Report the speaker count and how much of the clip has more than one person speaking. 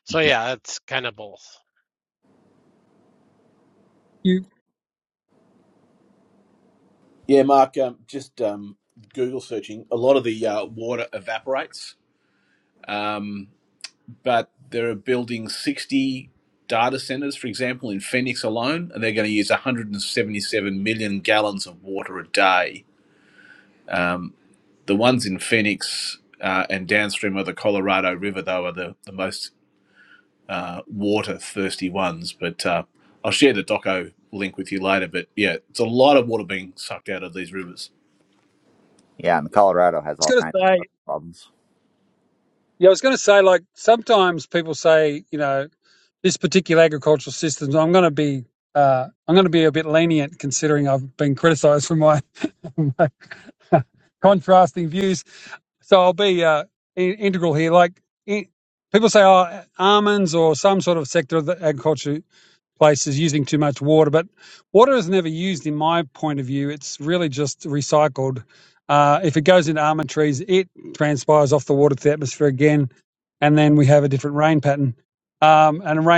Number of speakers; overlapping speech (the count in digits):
4, about 1%